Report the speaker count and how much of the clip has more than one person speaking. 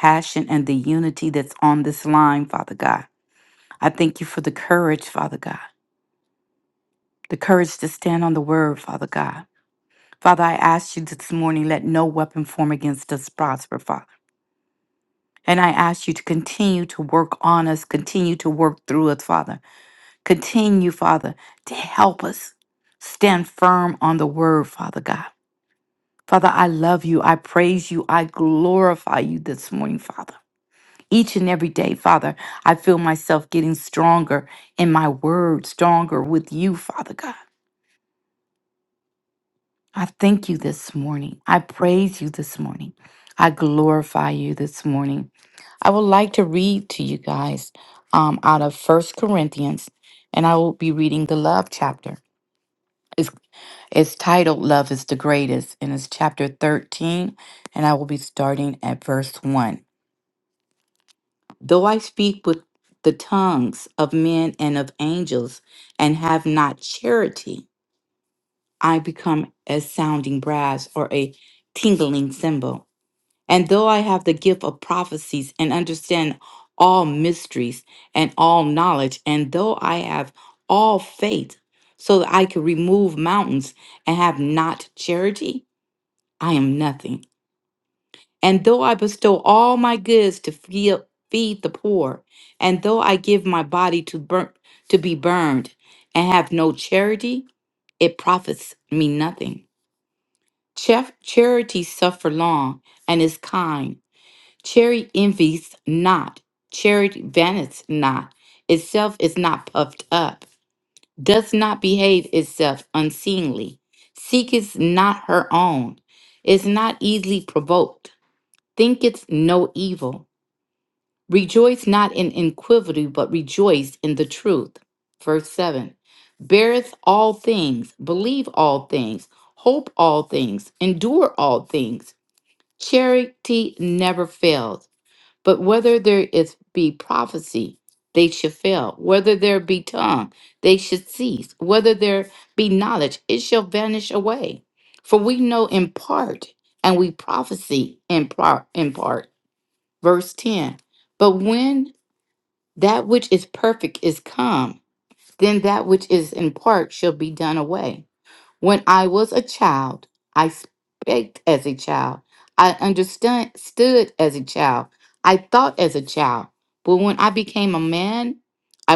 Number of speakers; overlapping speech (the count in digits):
1, no overlap